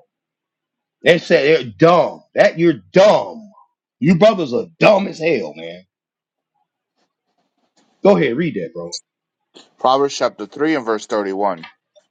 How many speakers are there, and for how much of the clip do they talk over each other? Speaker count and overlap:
2, no overlap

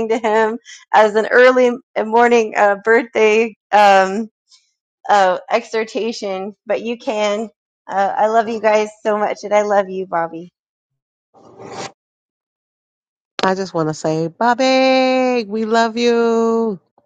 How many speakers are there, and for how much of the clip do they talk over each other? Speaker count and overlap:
2, no overlap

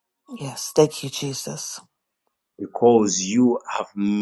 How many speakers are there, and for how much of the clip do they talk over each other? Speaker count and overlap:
2, no overlap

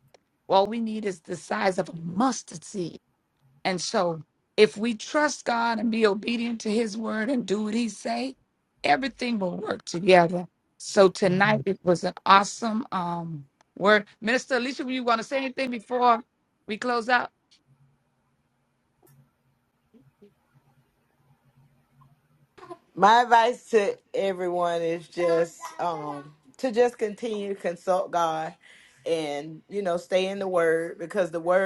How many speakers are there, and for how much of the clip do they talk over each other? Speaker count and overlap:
2, no overlap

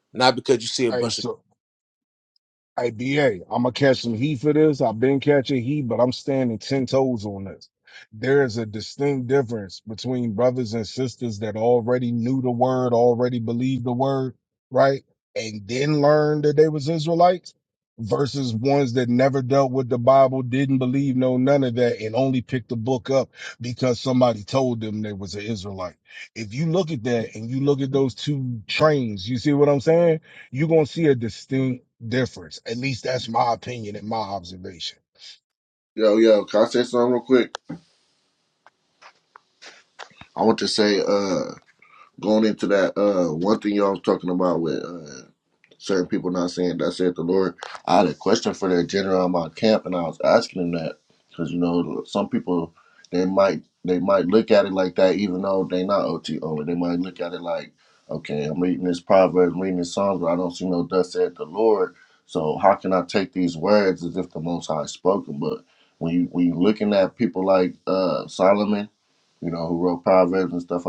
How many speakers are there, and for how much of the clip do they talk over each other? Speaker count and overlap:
3, under 1%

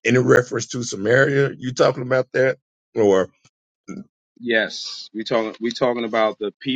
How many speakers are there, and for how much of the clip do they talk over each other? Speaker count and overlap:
2, no overlap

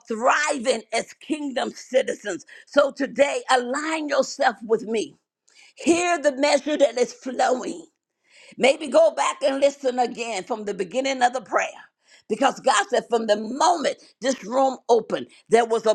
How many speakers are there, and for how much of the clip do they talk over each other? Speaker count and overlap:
1, no overlap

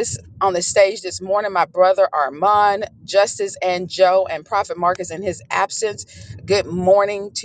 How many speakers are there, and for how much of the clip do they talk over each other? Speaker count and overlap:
1, no overlap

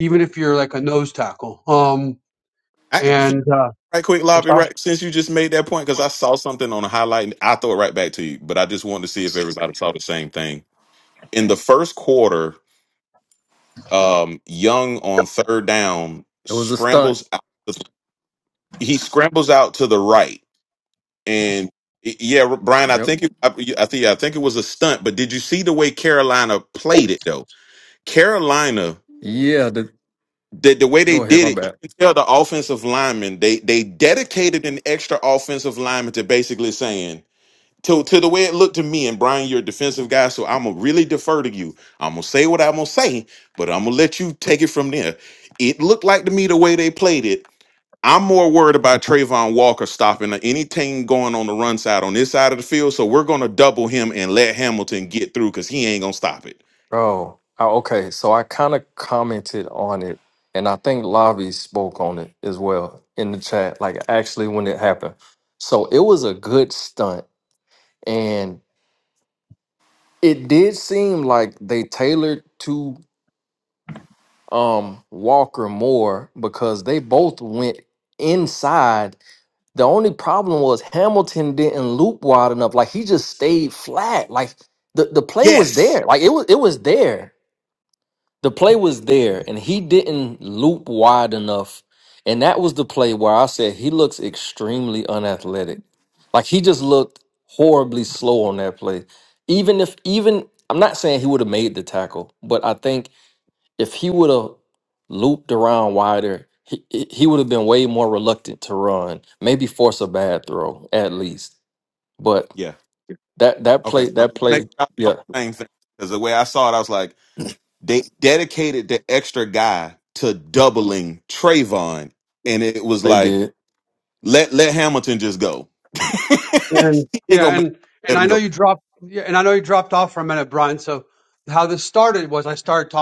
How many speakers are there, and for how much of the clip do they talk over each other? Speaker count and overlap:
3, about 4%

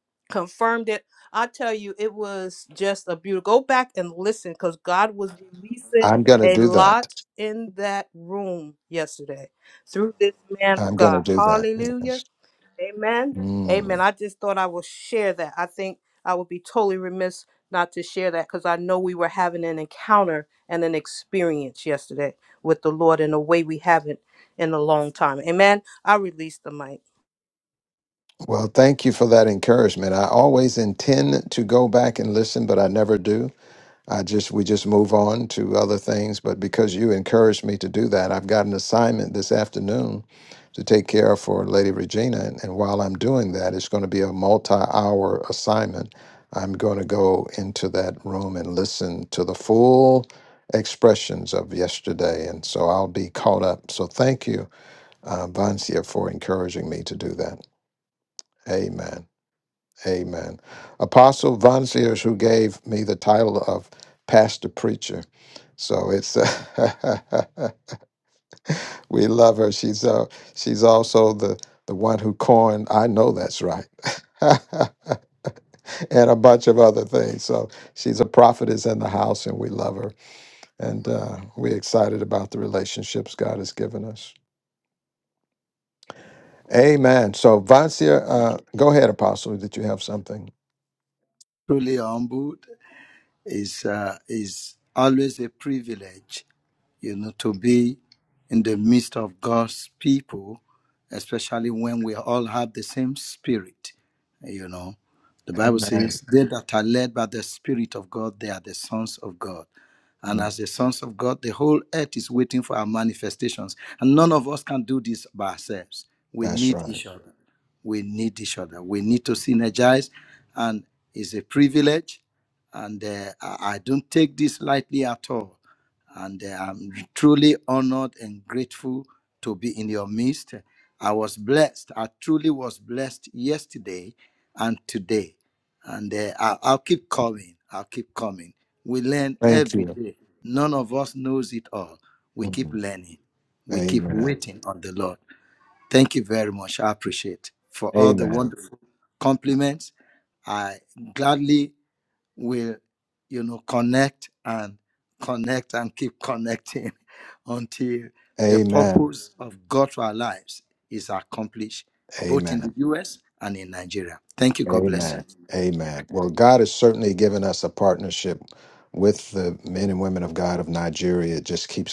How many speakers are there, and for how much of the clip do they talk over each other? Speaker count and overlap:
3, about 4%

